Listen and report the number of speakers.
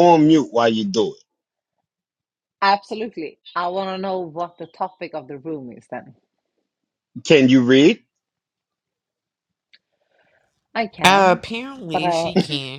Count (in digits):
3